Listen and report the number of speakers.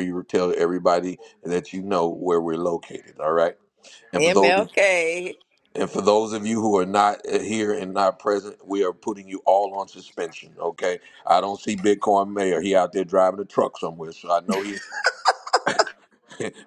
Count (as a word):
two